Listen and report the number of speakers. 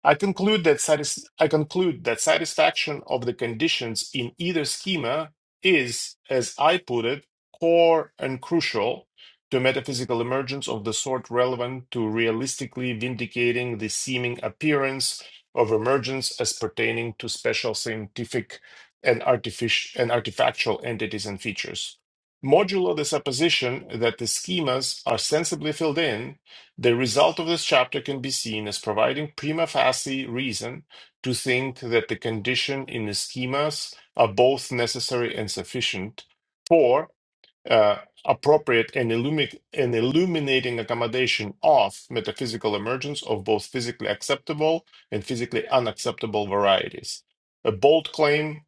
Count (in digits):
1